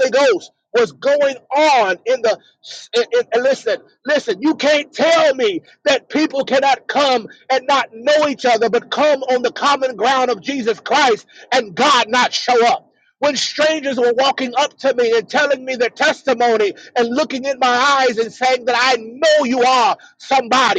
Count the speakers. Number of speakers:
1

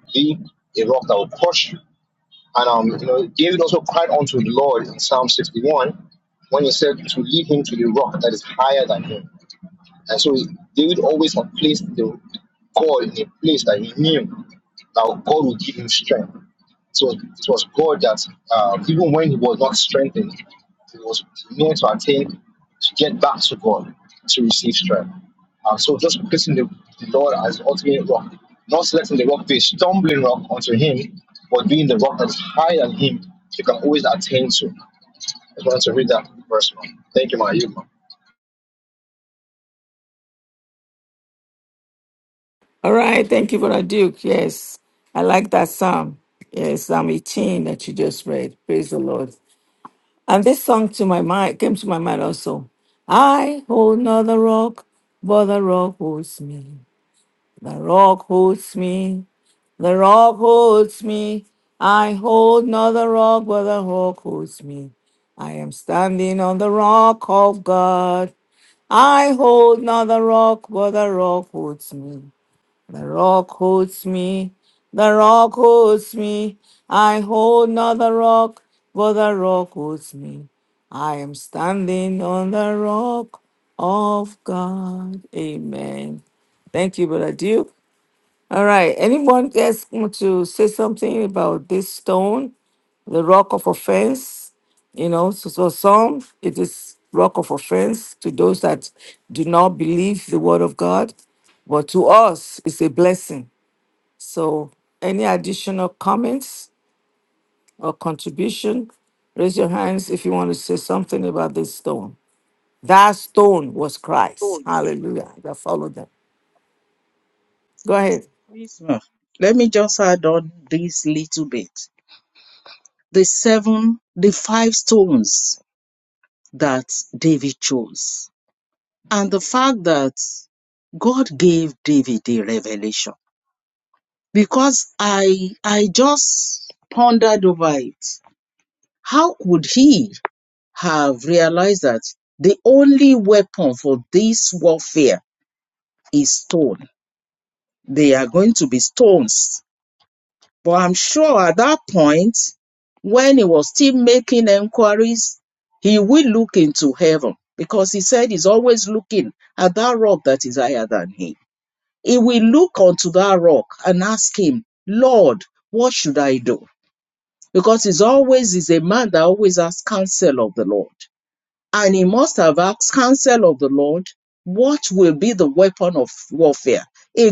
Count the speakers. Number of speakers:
3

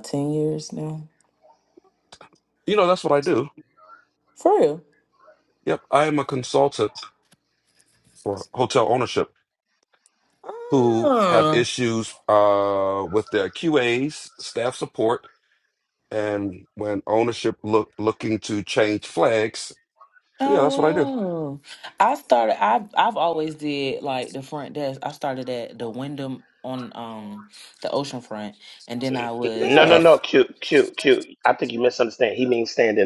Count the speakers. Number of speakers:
3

